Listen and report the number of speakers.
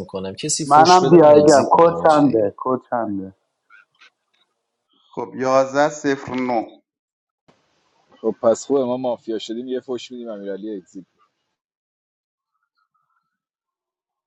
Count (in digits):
4